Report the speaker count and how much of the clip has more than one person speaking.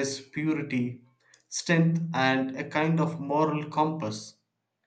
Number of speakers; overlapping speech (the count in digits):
1, no overlap